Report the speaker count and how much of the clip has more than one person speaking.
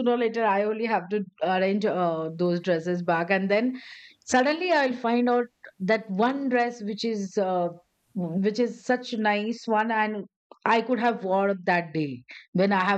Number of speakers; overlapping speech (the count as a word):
one, no overlap